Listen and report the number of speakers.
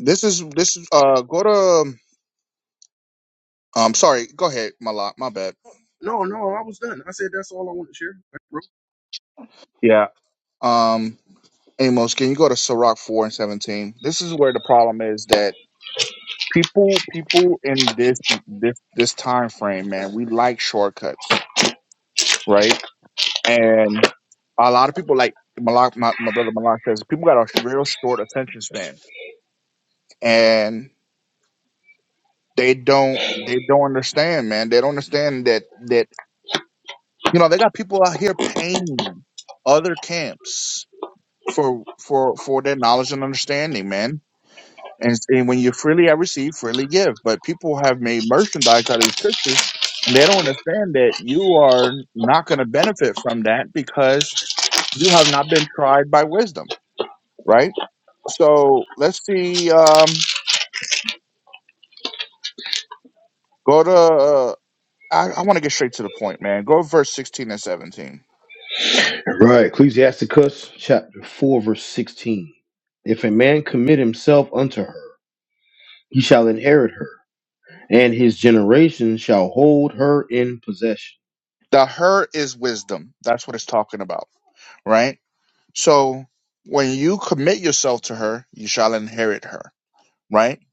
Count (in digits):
3